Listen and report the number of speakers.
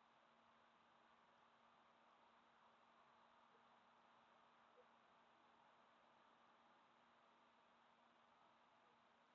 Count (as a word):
zero